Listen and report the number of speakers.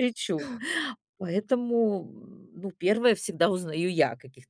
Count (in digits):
1